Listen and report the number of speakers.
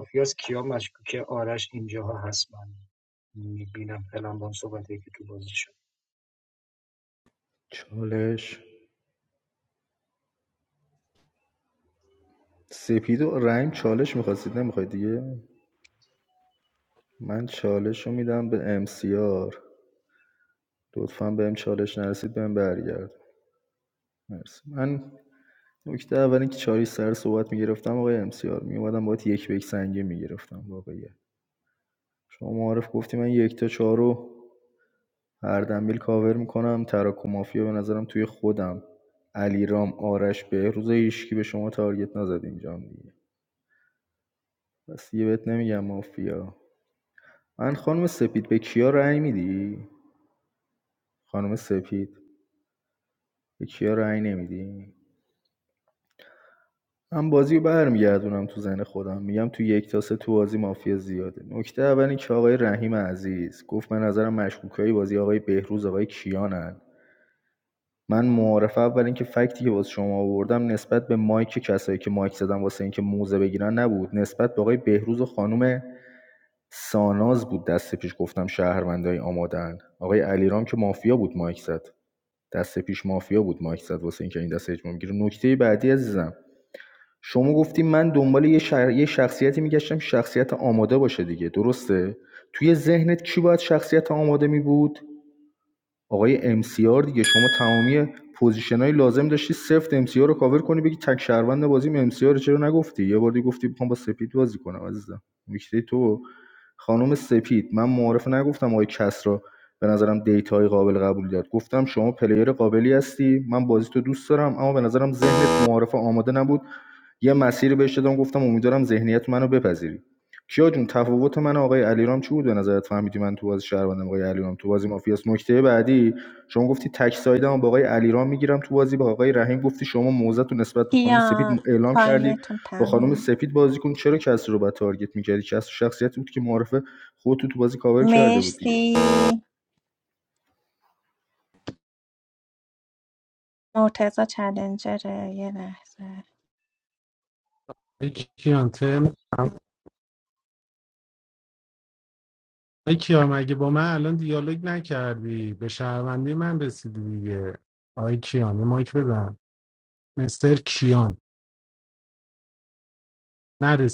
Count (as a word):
four